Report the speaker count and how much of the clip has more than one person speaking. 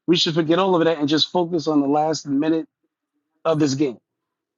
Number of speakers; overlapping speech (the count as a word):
one, no overlap